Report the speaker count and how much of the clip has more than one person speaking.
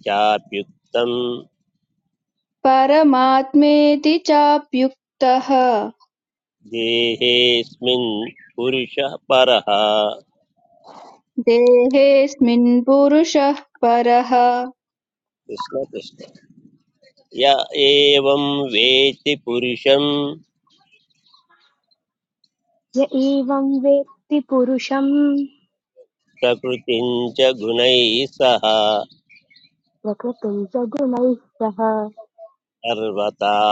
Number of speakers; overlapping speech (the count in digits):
3, no overlap